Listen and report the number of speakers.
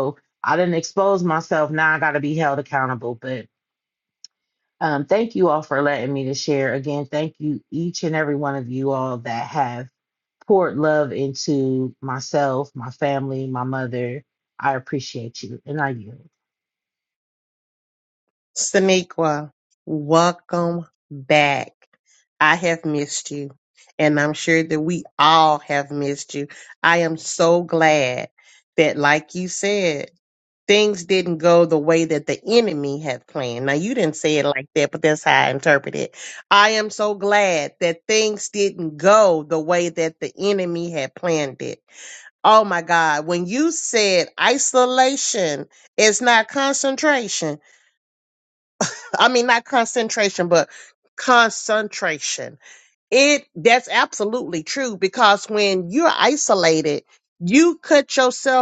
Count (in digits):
2